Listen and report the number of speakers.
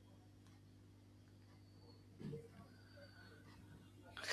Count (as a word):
zero